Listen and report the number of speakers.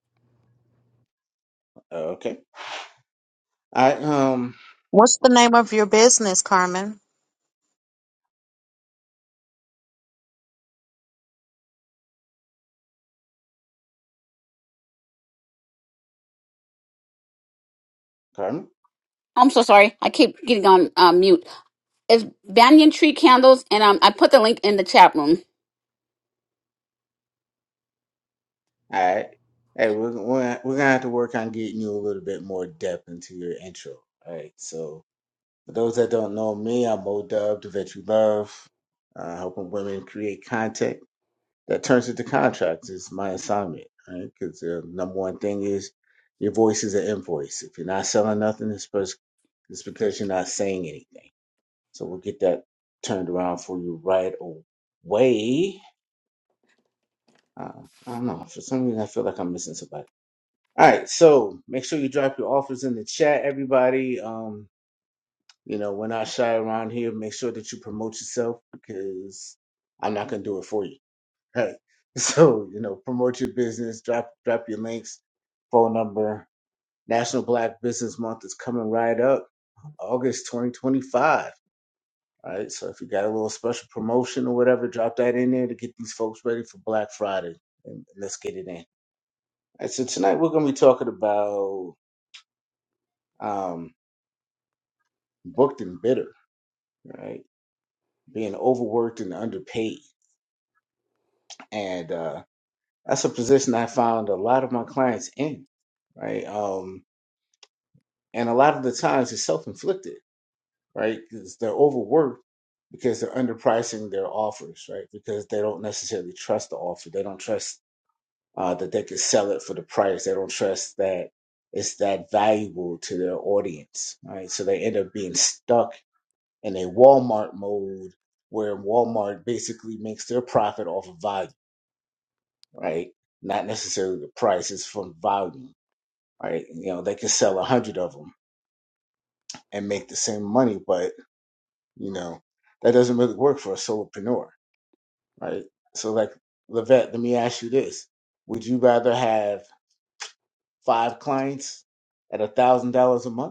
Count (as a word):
three